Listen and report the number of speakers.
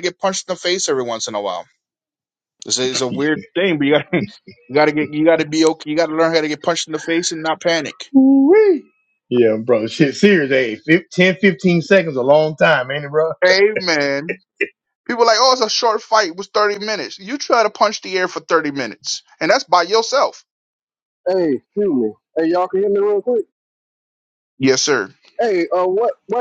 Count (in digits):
3